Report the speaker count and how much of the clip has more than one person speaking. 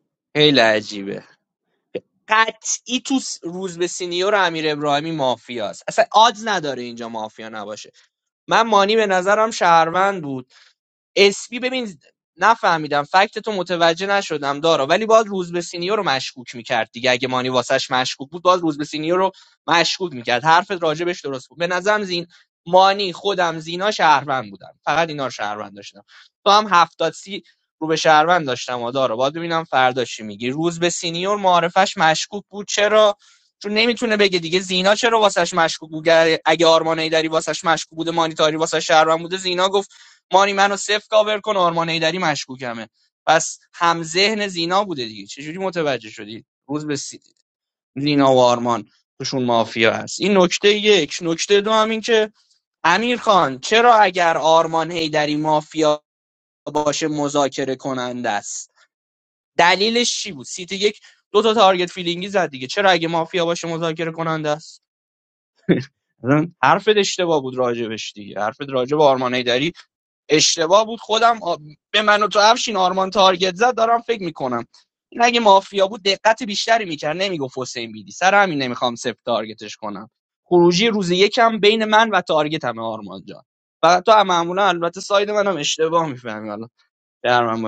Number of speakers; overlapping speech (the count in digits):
1, no overlap